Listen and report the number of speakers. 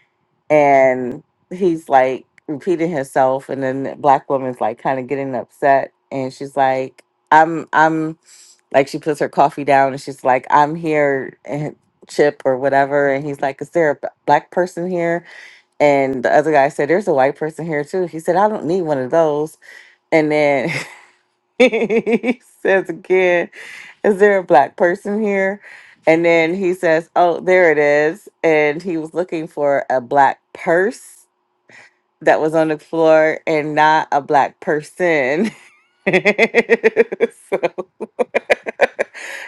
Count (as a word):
one